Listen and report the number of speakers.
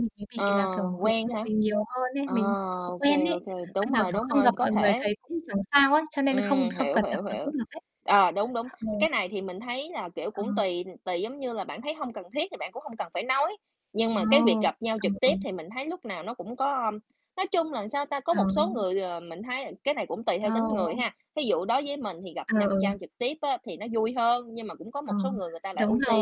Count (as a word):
two